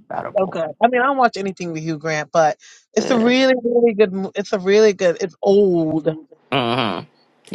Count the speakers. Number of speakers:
2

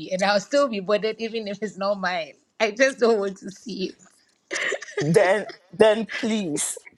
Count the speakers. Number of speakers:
2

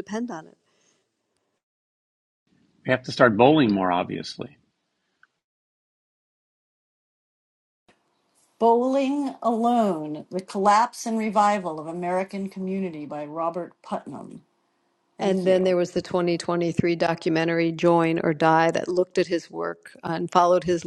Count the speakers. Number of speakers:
3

